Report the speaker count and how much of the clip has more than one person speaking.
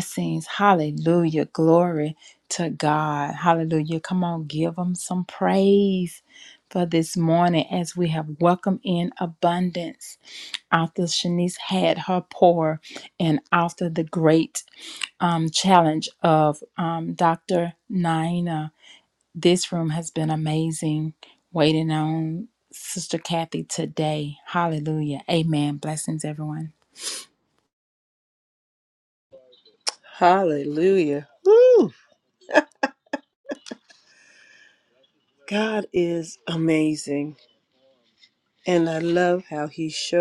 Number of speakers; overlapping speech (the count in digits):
2, no overlap